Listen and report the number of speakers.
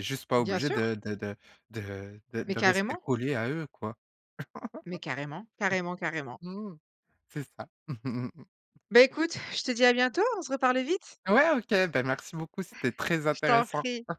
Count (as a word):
two